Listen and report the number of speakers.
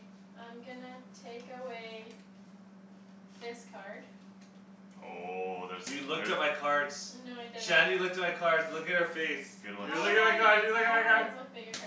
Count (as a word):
three